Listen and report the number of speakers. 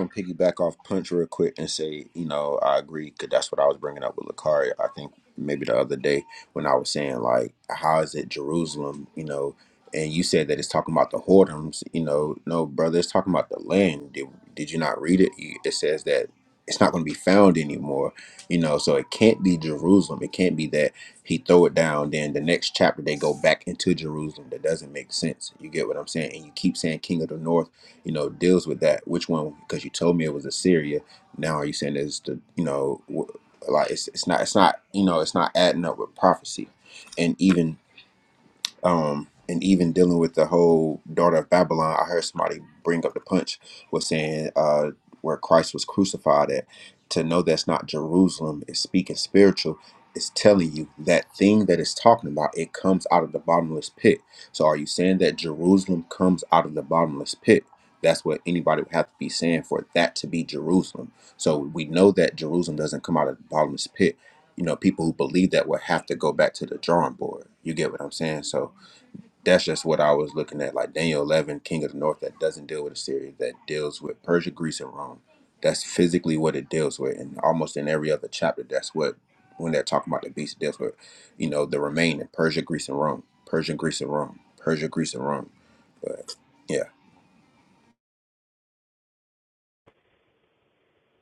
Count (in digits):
1